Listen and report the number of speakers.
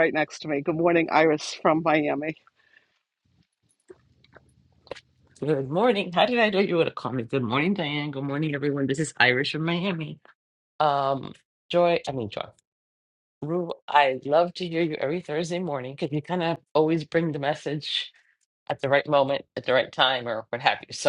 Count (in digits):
2